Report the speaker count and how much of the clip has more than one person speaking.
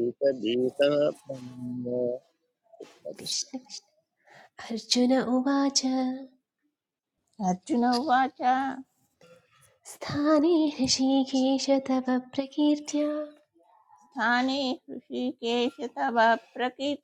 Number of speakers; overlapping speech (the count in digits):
3, no overlap